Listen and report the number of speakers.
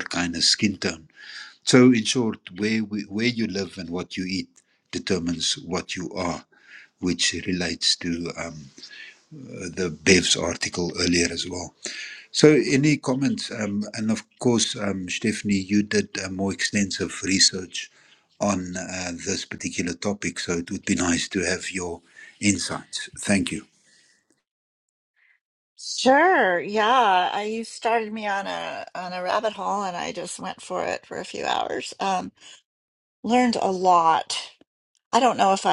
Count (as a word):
two